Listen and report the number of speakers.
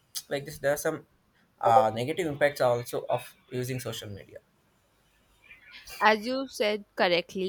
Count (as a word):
two